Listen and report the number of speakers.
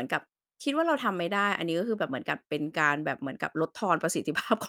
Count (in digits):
1